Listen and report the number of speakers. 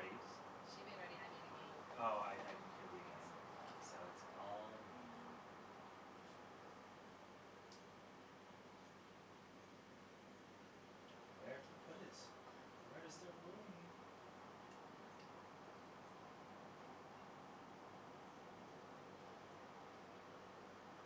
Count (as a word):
two